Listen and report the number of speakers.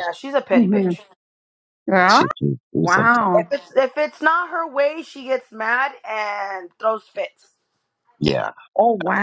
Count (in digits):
3